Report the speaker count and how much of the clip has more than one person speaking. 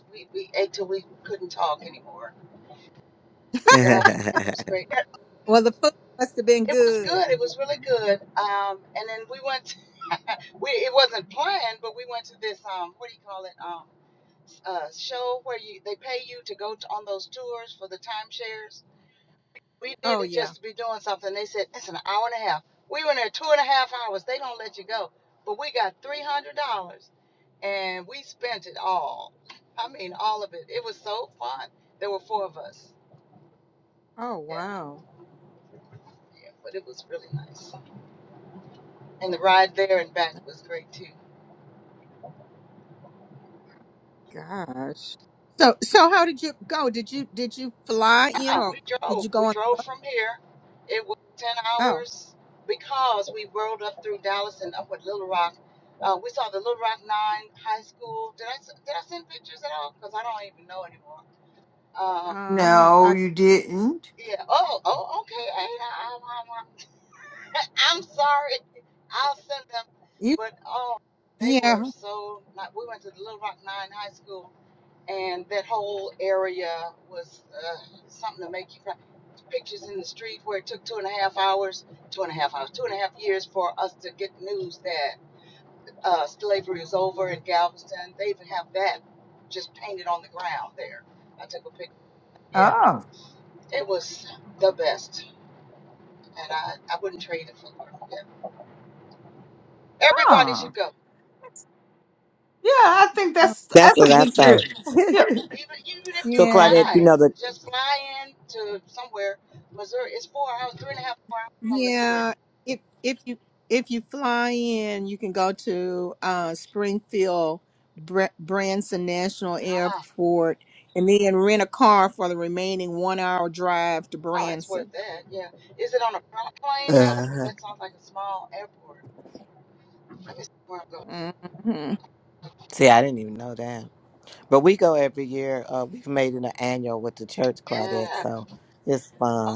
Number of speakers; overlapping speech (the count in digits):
4, about 7%